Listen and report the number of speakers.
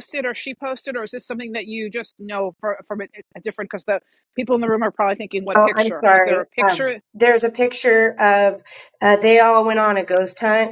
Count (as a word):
two